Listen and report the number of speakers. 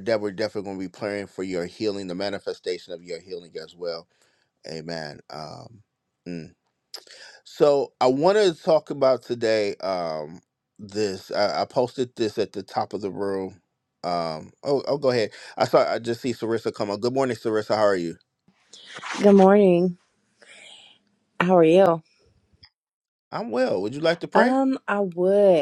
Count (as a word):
two